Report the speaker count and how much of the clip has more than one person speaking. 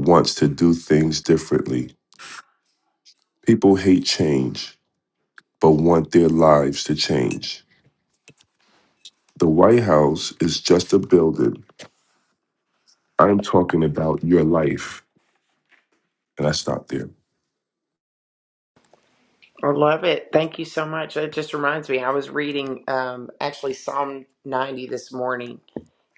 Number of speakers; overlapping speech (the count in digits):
2, no overlap